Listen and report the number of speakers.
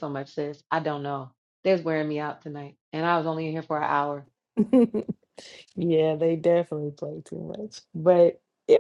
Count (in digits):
2